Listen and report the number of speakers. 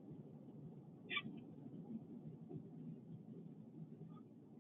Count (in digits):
0